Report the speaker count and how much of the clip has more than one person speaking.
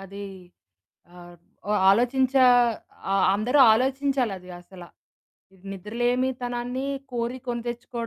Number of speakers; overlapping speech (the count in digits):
1, no overlap